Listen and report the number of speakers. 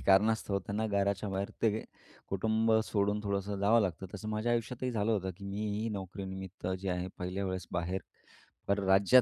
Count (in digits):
1